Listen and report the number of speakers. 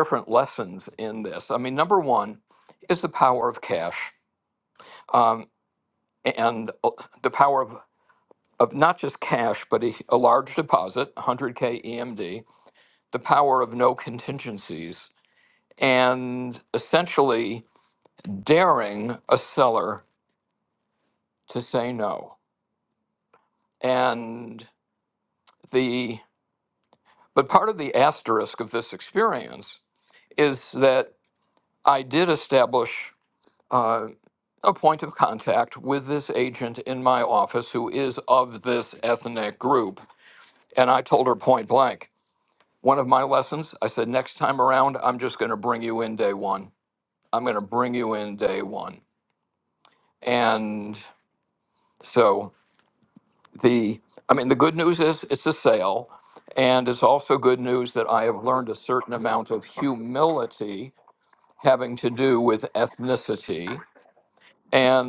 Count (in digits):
1